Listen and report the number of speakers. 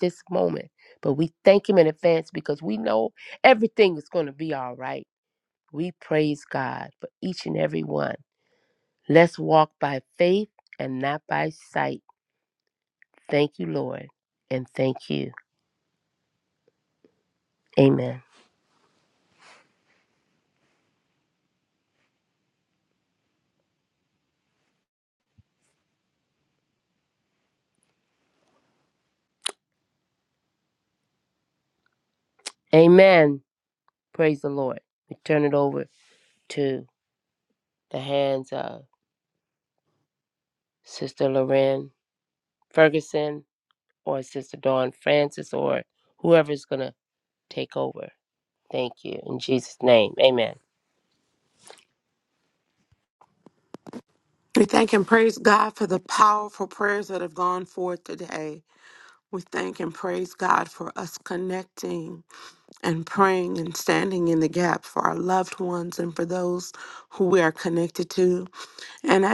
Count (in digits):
2